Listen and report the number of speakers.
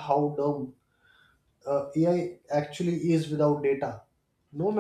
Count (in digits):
1